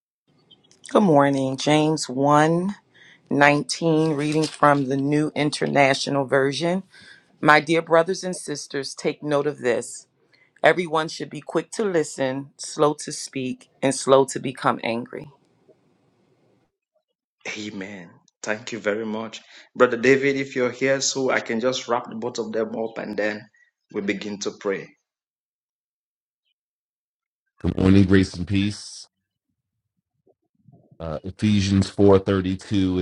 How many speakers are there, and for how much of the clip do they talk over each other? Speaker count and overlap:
3, no overlap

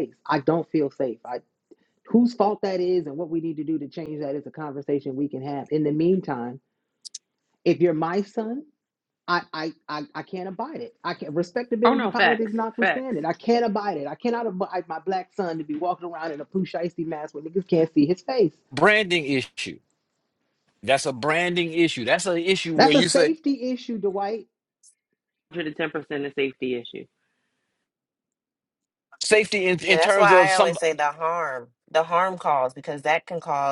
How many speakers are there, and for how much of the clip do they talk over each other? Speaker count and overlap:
4, about 7%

